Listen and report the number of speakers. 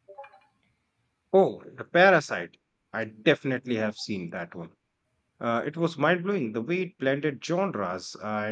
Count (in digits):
1